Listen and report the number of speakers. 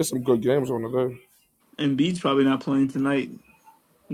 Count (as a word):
two